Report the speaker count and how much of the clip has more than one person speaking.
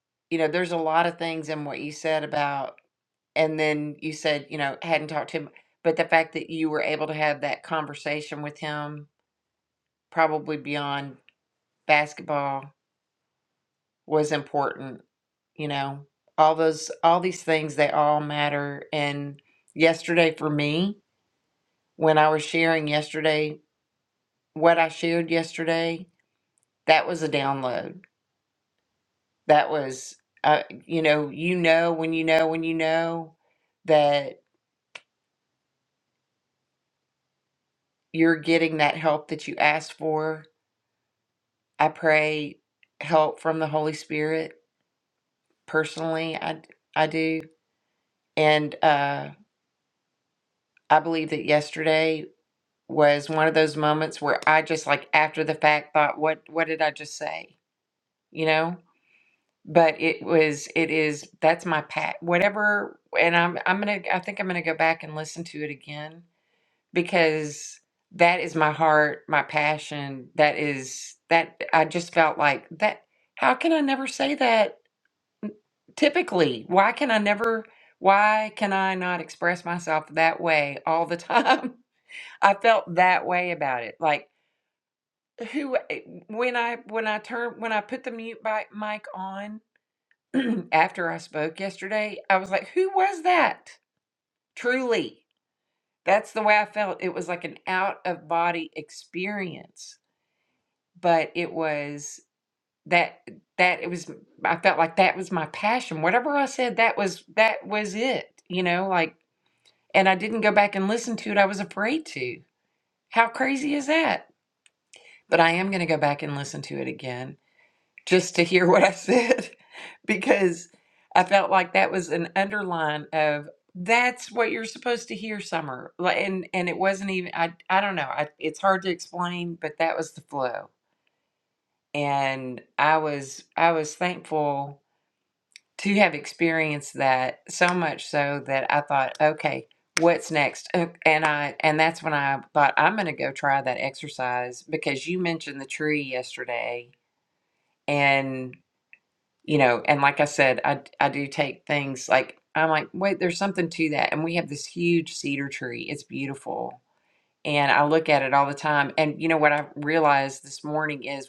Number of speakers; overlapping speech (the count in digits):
1, no overlap